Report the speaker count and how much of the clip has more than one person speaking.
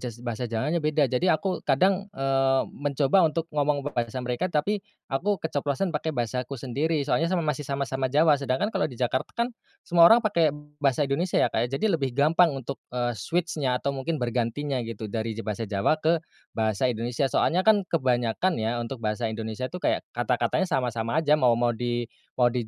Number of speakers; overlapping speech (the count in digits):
1, no overlap